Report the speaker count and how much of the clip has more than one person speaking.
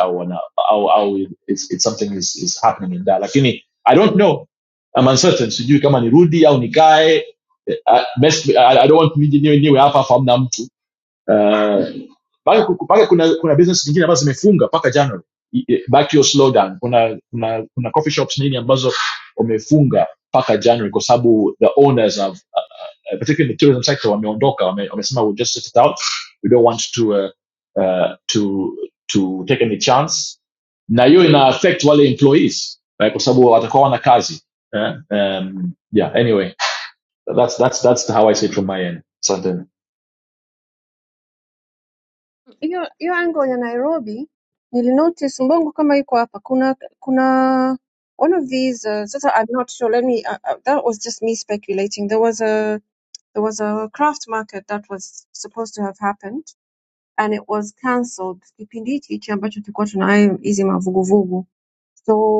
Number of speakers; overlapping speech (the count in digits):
2, no overlap